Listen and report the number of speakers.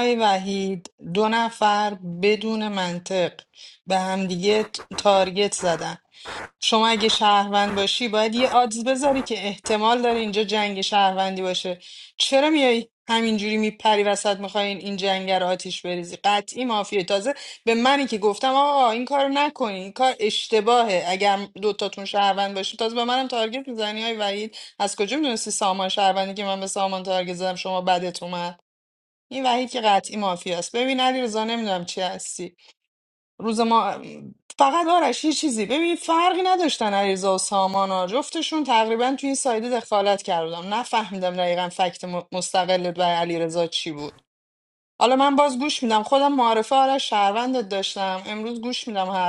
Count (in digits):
1